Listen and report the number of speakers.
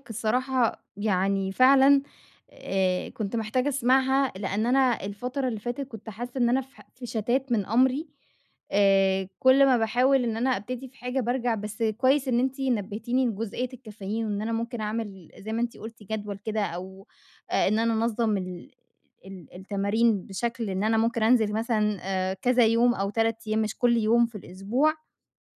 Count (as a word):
one